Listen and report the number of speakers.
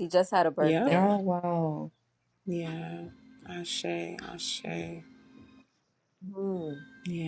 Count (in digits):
3